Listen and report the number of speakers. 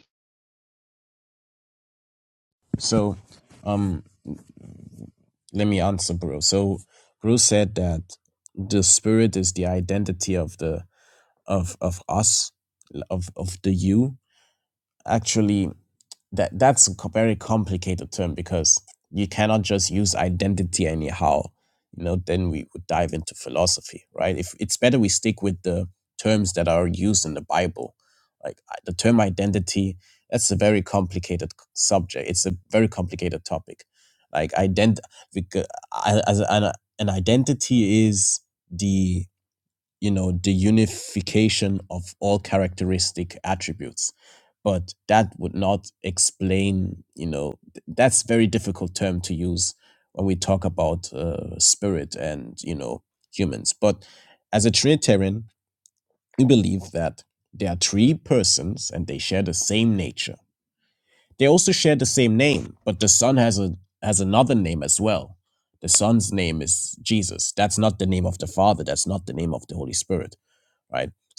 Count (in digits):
1